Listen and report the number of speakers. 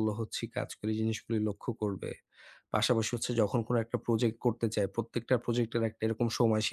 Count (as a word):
one